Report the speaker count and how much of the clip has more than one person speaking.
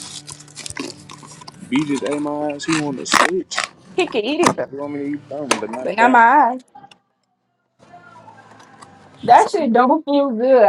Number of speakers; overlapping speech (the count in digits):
3, about 3%